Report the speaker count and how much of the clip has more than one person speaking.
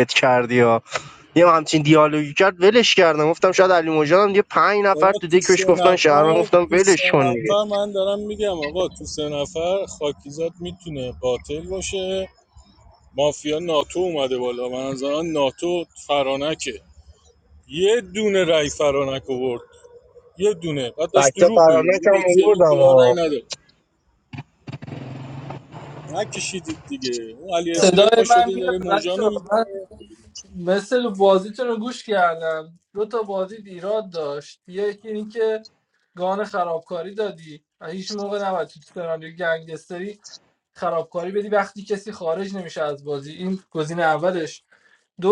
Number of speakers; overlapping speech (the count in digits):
3, about 14%